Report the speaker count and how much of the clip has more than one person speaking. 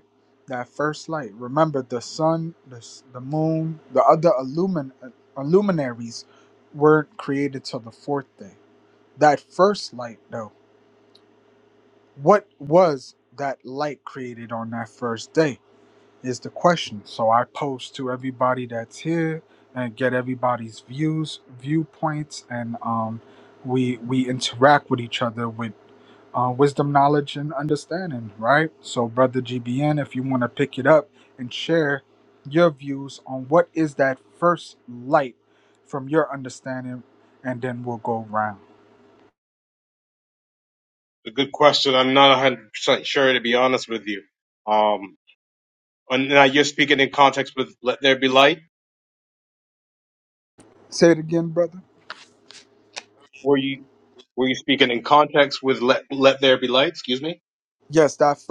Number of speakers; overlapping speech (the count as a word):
two, no overlap